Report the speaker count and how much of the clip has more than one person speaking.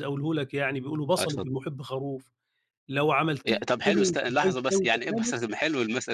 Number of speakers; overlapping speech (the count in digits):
2, about 36%